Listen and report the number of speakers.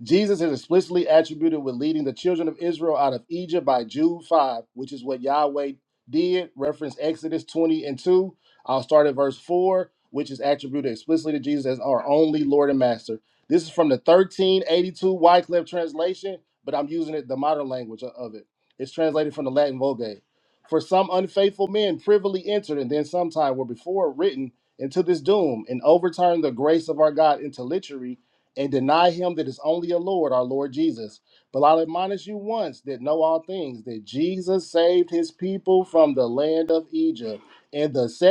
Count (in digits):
1